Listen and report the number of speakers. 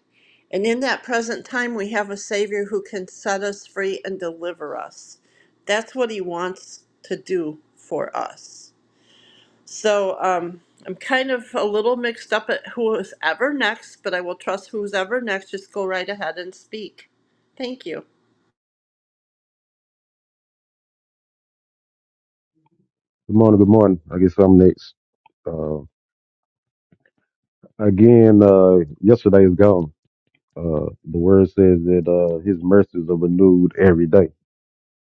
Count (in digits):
2